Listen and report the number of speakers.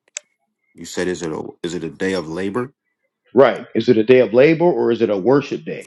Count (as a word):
two